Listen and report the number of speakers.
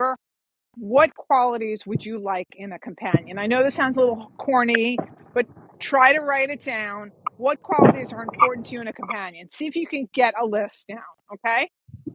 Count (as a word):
one